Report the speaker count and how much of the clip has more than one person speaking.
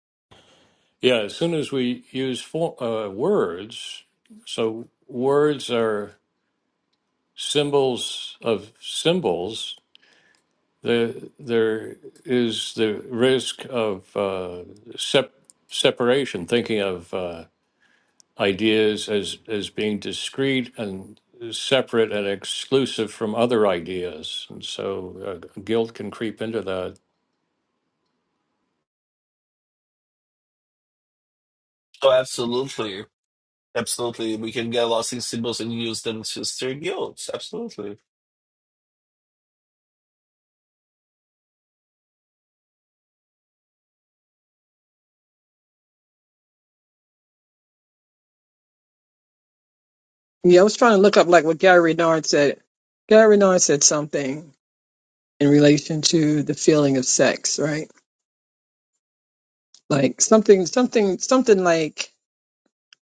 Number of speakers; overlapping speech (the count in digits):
3, no overlap